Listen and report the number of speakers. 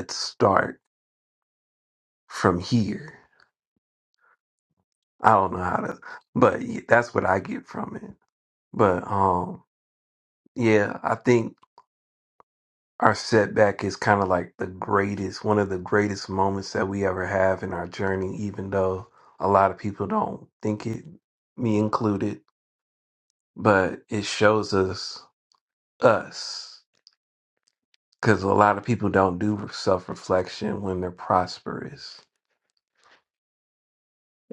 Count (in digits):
1